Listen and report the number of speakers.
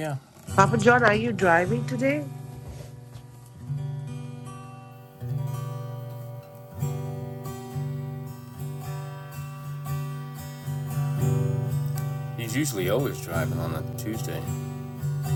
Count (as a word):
two